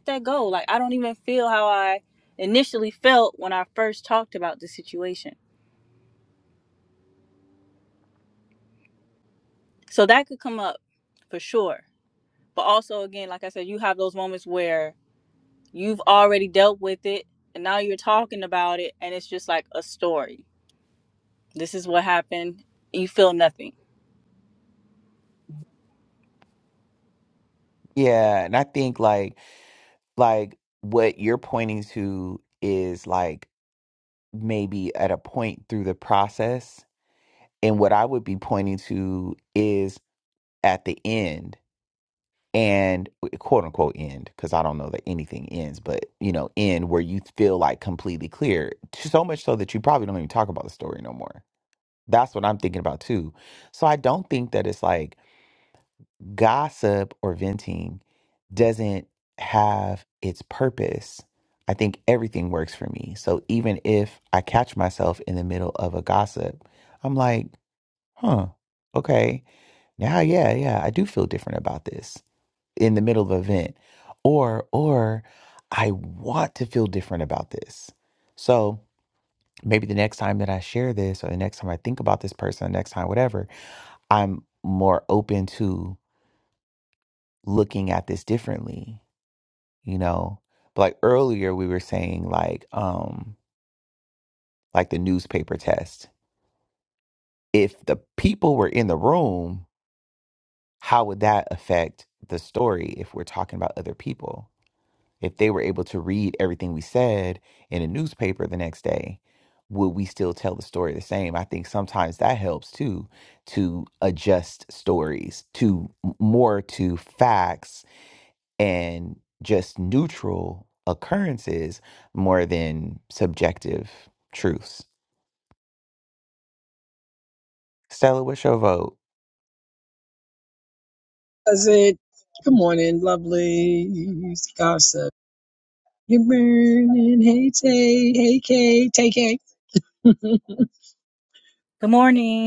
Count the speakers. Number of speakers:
three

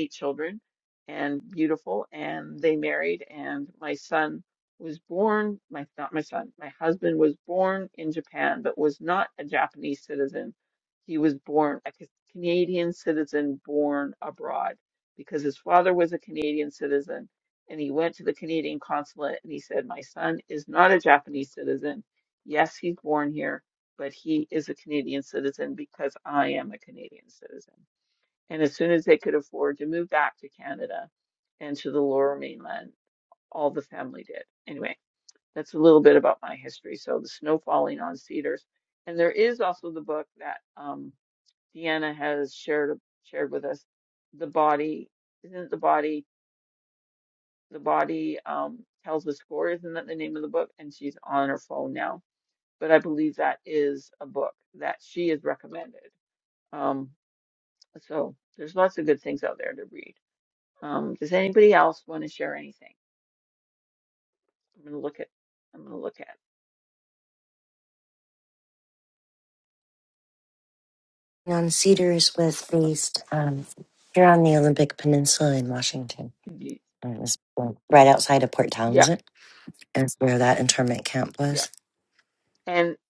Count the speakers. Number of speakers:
two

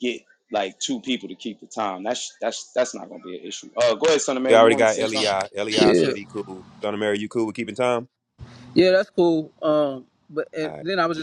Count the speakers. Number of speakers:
three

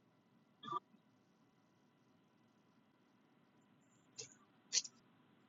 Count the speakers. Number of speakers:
zero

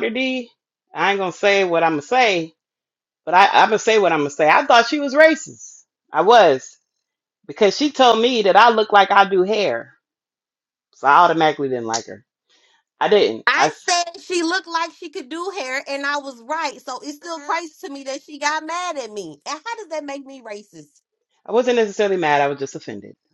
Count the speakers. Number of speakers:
two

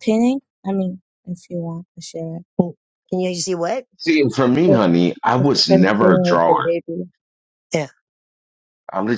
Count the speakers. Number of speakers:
three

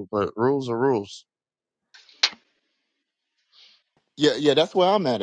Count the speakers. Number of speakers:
two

